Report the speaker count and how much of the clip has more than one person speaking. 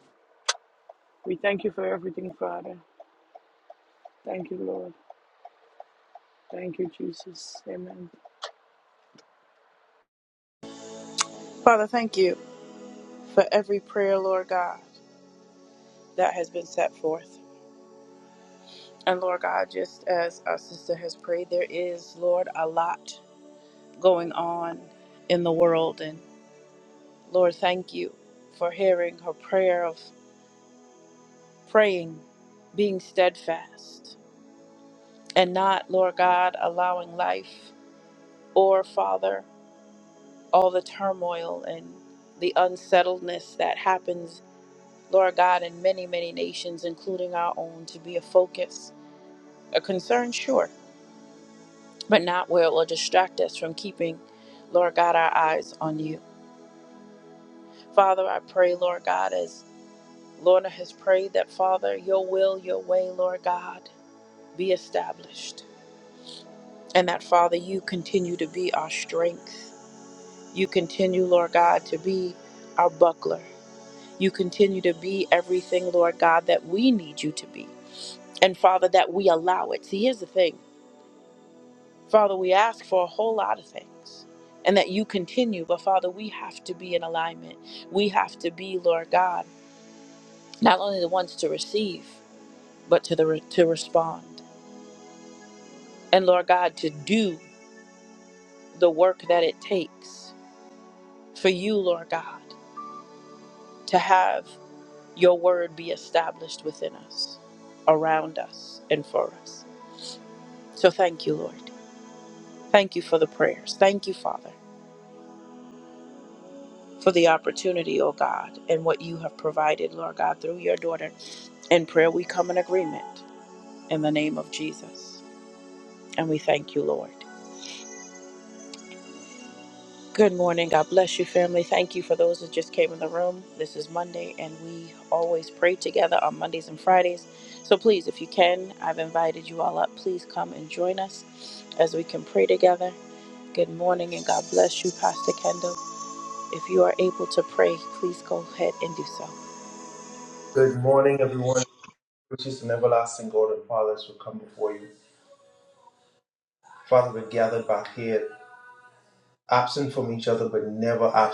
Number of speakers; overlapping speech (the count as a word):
three, no overlap